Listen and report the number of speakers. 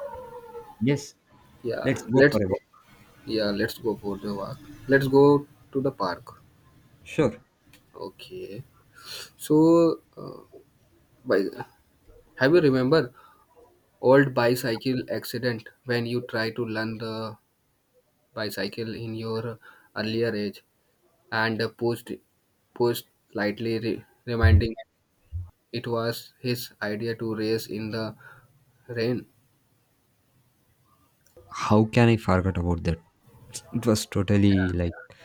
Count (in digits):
2